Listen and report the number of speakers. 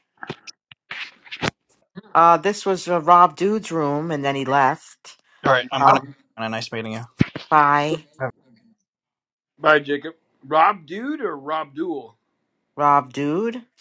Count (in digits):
3